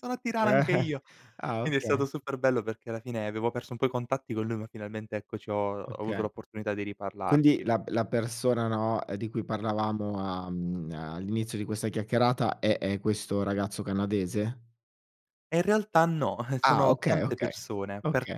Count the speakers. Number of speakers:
two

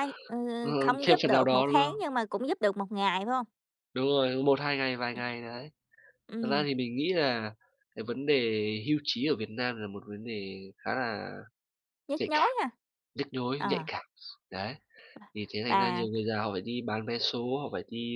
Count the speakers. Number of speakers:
two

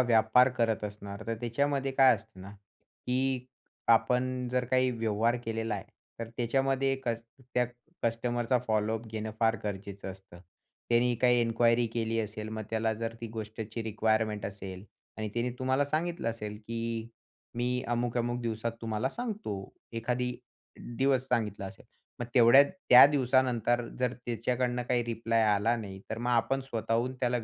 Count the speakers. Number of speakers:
one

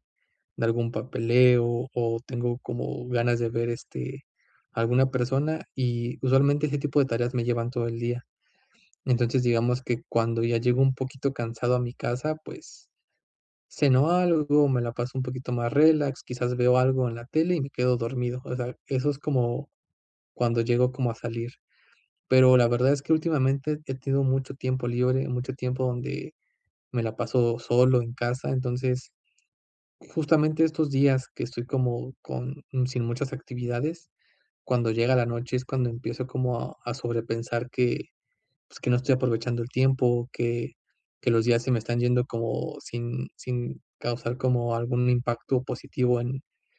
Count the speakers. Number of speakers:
one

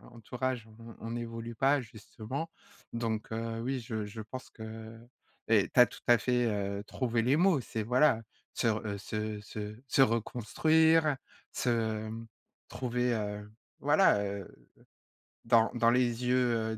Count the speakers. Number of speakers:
one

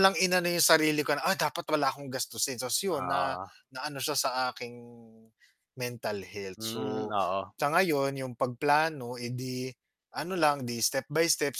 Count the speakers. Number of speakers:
two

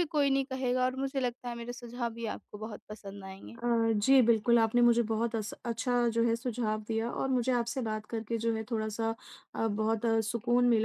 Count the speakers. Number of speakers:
two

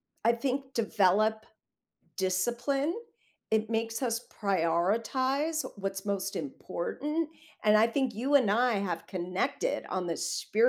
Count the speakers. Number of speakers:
one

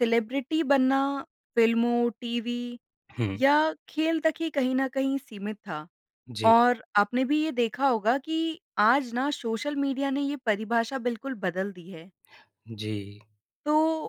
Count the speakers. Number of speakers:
two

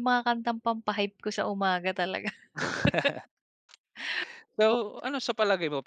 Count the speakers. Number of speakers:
two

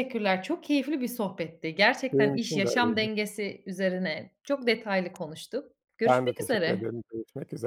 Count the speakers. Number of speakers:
two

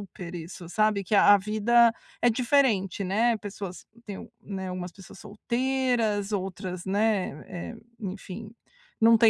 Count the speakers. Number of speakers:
one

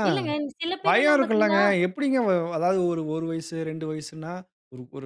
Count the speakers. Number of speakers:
two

